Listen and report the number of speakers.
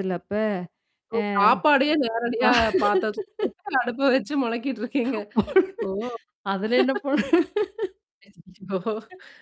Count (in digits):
2